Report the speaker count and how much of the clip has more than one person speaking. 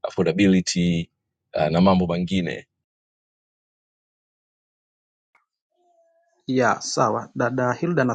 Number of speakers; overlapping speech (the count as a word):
two, no overlap